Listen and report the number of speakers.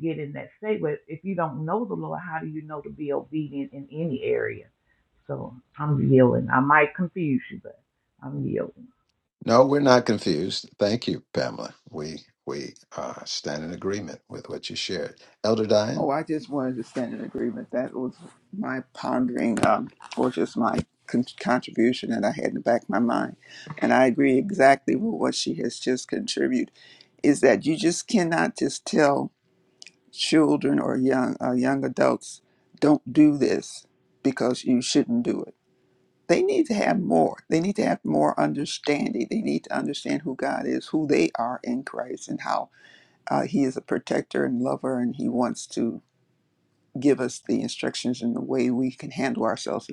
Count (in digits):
3